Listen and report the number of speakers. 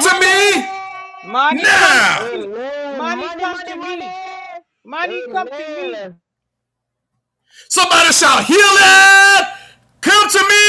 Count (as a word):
three